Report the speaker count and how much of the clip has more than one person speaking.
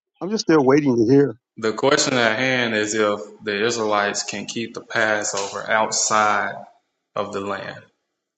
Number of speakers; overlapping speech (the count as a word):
two, no overlap